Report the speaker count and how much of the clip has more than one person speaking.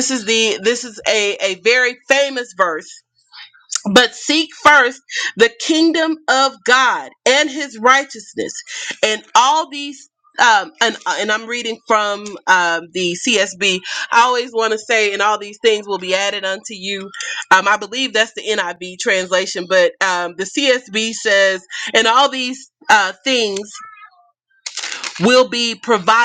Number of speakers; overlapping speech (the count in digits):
1, no overlap